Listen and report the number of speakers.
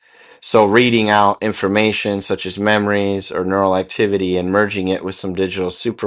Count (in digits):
1